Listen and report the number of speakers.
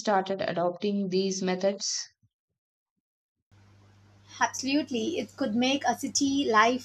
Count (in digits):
2